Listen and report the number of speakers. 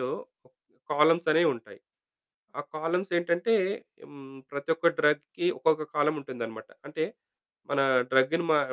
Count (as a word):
one